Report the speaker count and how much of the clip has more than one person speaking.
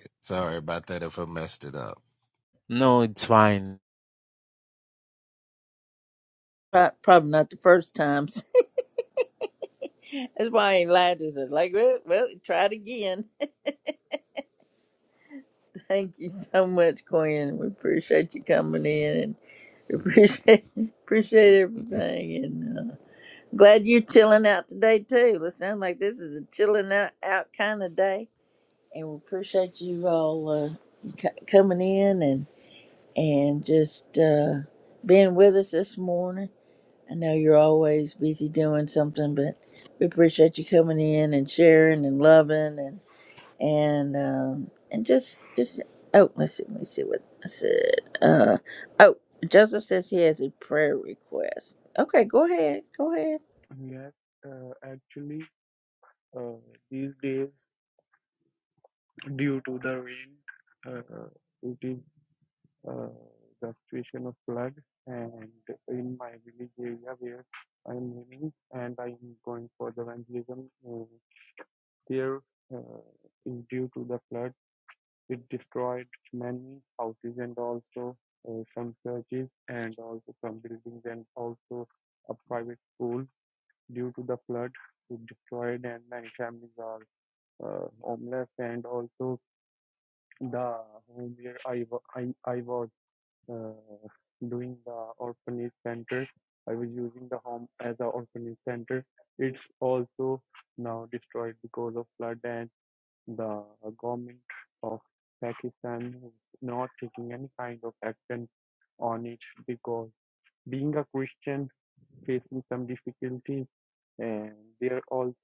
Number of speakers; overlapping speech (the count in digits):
4, no overlap